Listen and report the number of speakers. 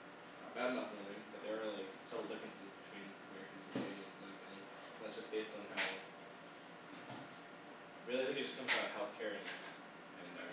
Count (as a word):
one